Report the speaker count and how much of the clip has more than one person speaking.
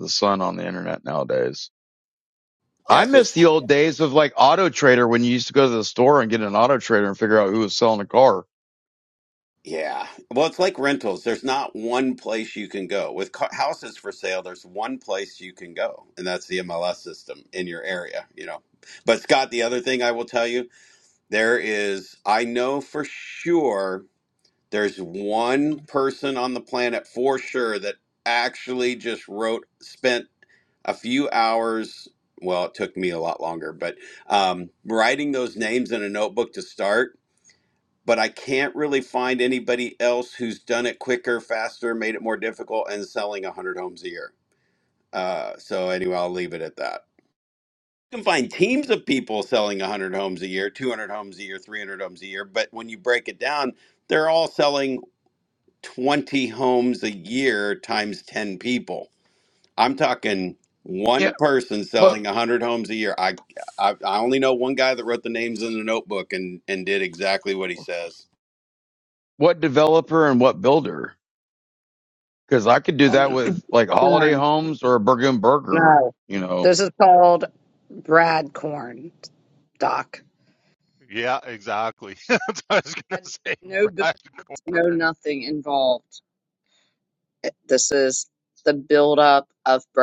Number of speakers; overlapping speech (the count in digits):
4, about 3%